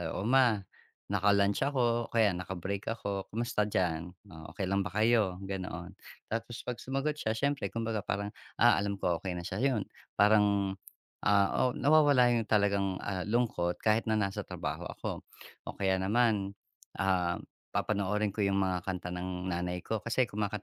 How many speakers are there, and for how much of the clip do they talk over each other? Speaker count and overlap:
one, no overlap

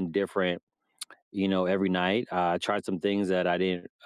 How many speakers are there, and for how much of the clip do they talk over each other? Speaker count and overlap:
one, no overlap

